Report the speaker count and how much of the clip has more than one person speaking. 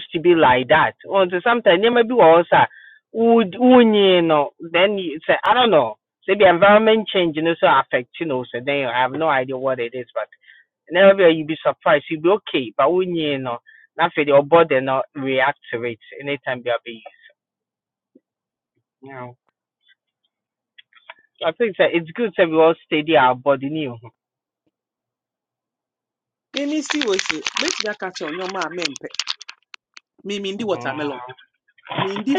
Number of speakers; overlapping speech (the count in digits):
2, about 1%